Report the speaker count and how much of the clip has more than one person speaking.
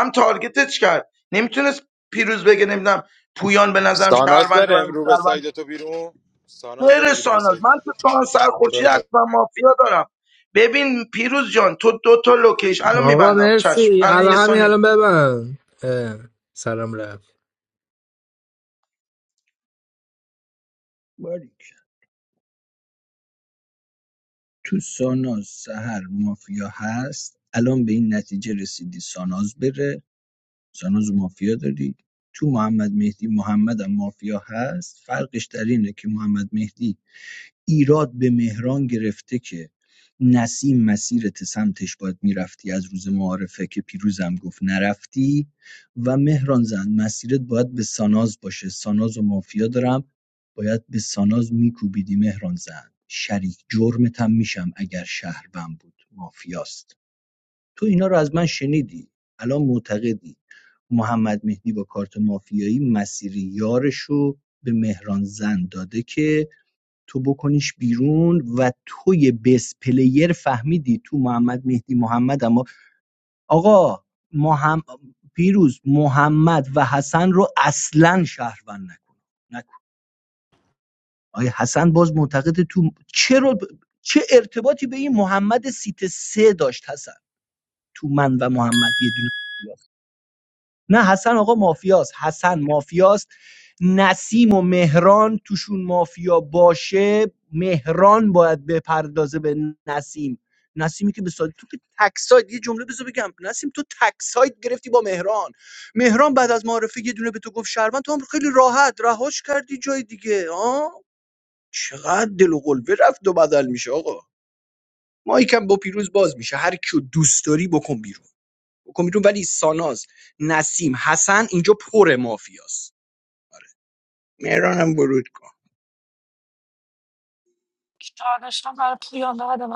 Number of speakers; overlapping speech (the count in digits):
5, about 3%